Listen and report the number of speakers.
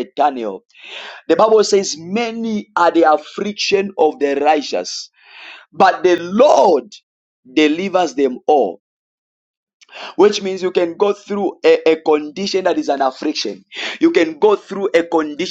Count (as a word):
one